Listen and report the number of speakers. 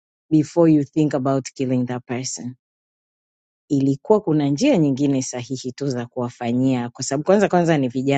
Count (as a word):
one